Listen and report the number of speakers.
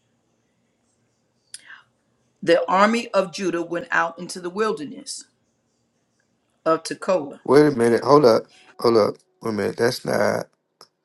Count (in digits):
2